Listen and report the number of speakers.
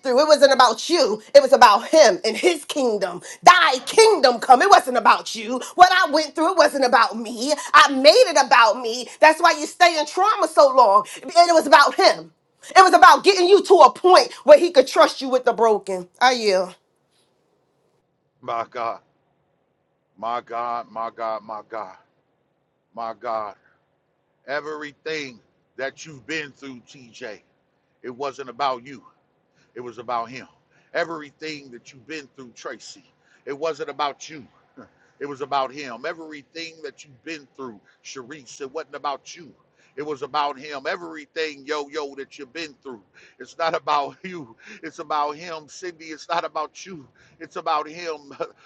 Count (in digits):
2